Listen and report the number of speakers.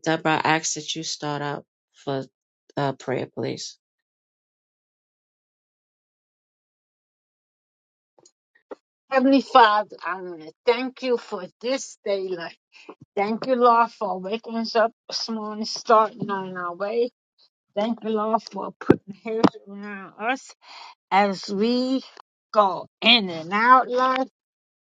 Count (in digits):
2